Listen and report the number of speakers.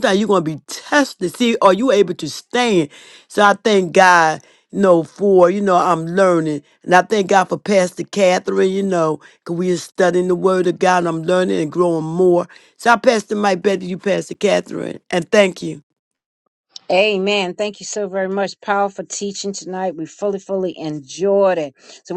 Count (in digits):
2